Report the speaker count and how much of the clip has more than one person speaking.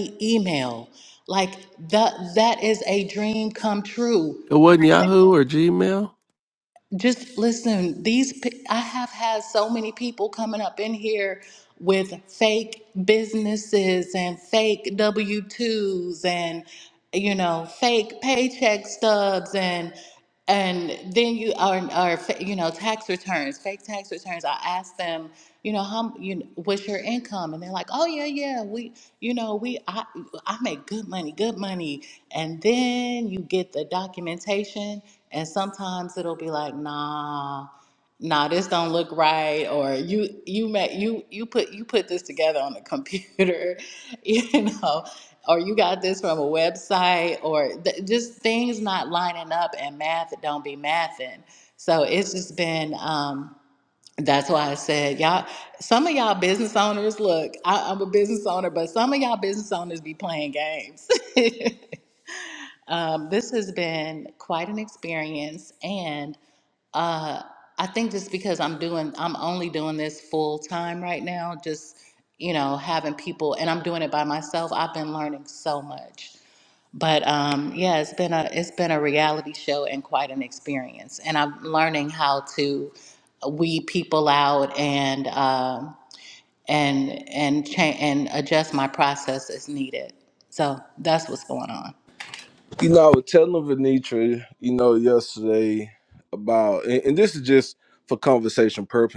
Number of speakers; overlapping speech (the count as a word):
three, no overlap